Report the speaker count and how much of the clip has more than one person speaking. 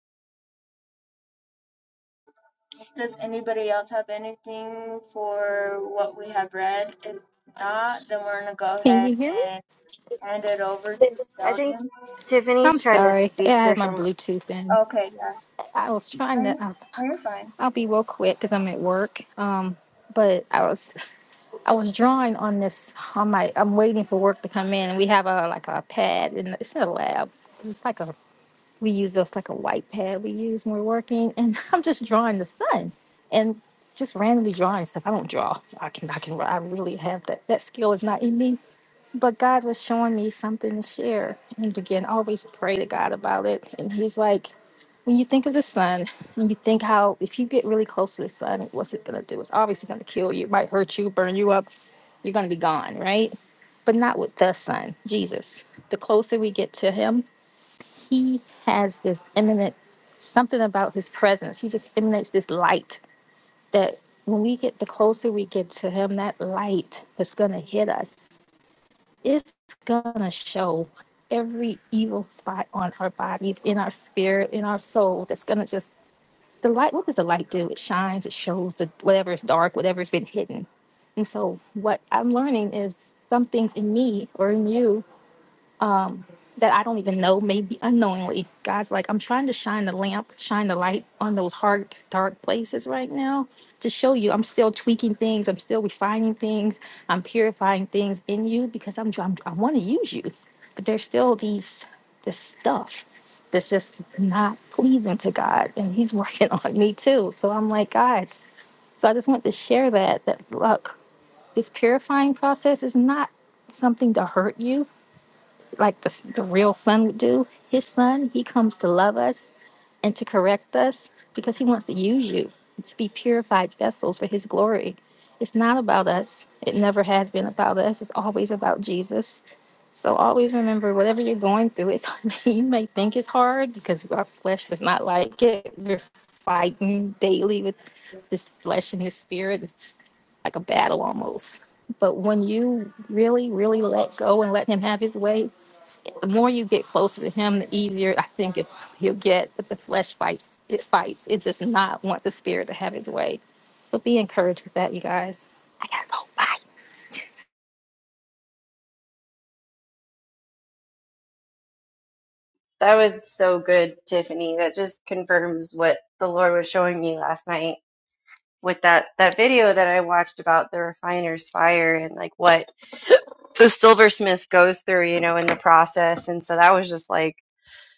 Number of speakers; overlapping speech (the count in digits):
3, about 1%